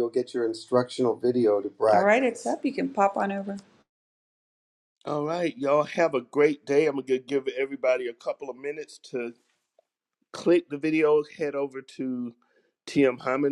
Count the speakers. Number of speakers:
3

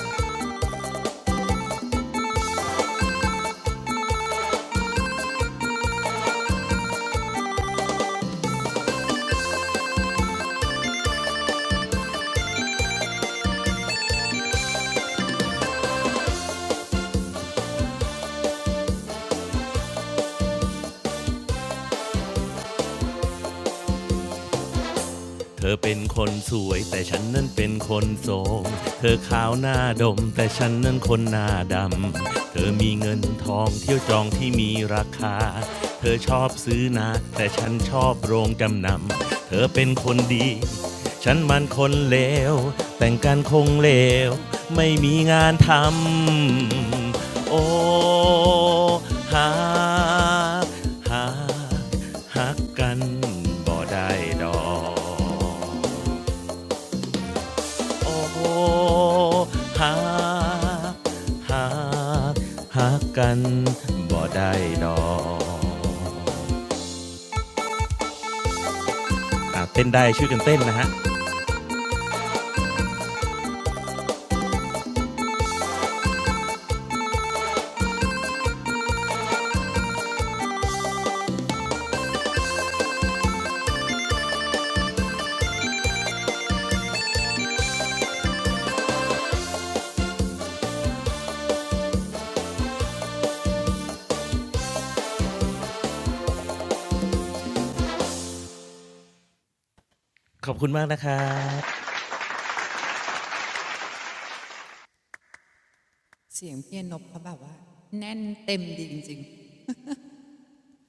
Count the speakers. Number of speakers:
2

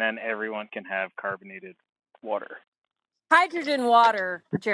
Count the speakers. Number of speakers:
2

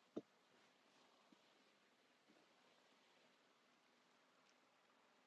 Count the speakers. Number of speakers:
0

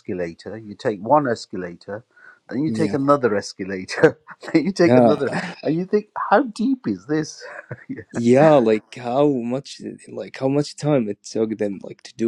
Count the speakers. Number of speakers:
2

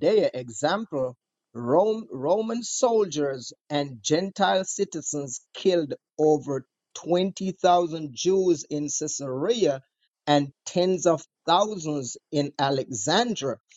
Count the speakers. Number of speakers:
1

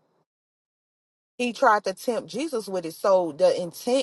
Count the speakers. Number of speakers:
1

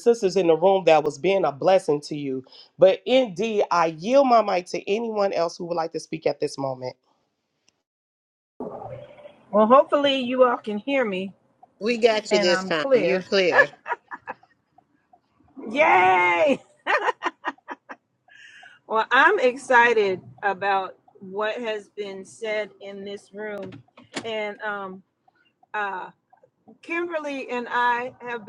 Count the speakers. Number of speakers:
3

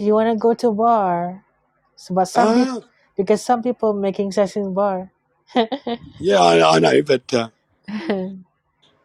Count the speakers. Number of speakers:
2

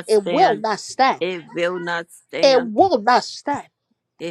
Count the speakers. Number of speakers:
2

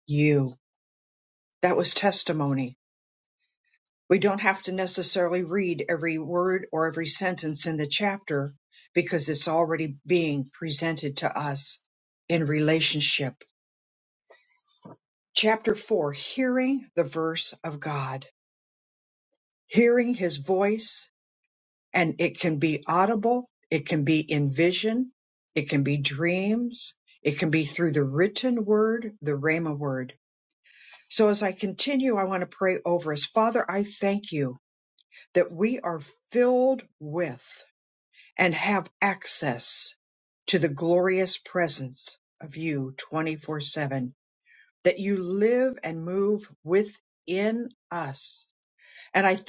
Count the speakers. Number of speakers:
1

